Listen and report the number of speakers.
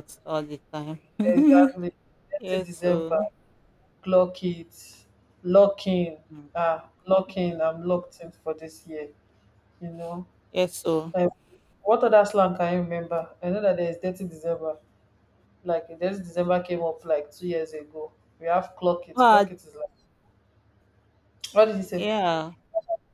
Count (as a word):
two